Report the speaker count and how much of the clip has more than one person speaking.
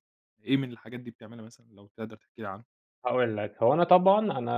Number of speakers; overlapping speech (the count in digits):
2, no overlap